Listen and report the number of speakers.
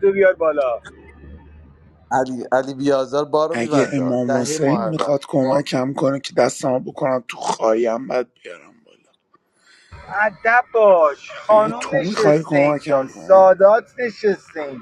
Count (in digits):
3